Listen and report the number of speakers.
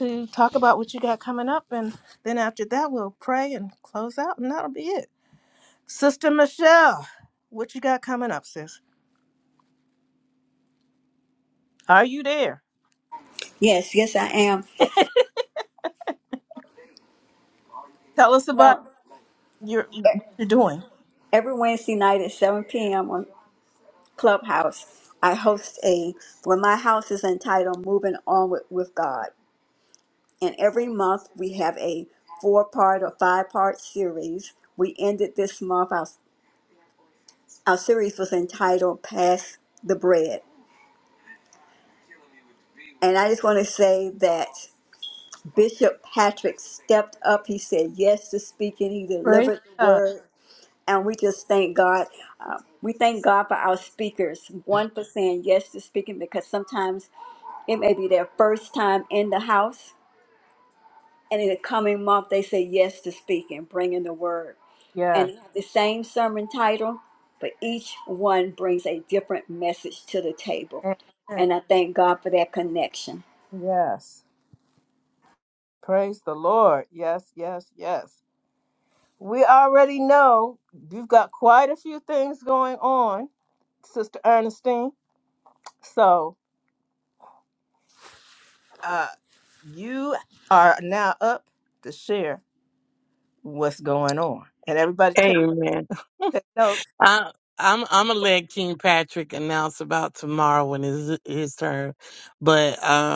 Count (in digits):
3